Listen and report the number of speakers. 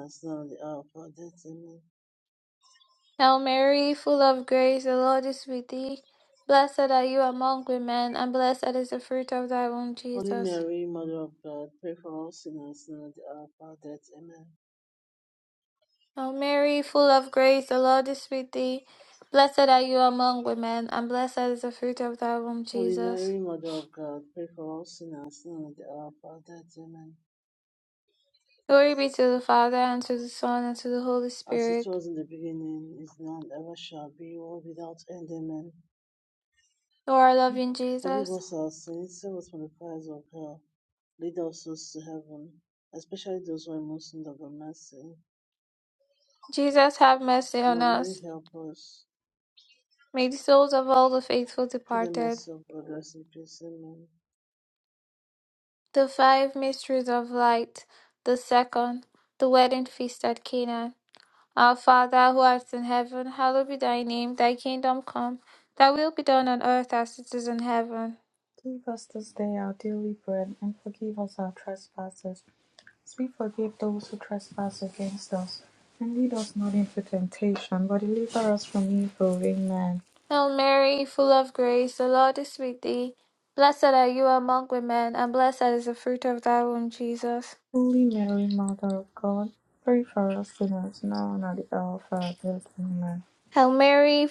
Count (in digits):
3